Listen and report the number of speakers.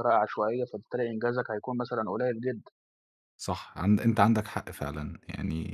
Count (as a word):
two